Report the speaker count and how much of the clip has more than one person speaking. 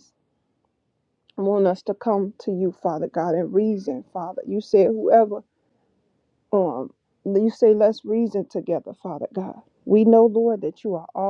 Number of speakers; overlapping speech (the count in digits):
1, no overlap